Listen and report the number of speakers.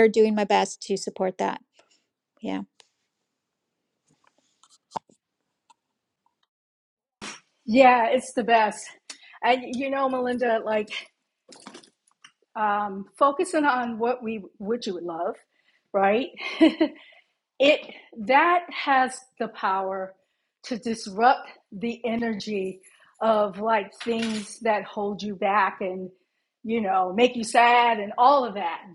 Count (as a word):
two